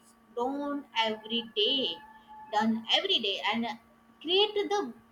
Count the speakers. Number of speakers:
1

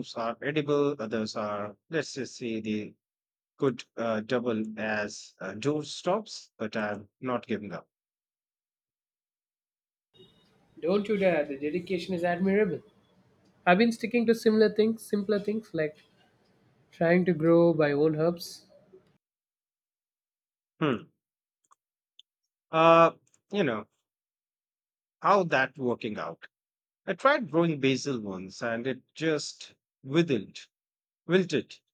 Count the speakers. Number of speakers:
2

